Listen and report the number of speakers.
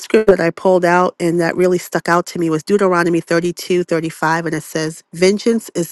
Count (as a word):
one